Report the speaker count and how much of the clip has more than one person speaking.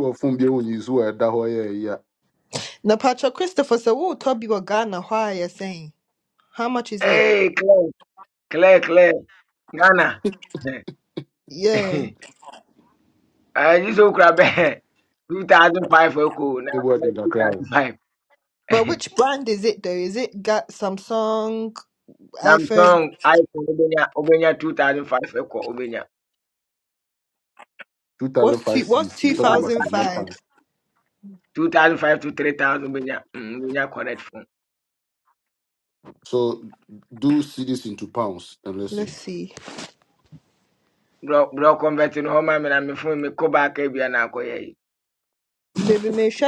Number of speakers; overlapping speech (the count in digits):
3, about 7%